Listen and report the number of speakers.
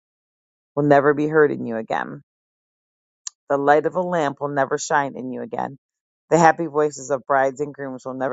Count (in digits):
1